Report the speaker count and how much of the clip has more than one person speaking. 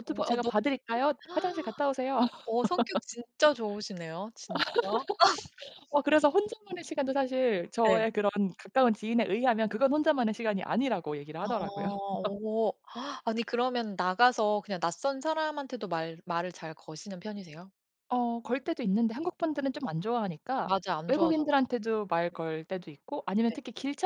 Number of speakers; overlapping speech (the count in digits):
2, about 8%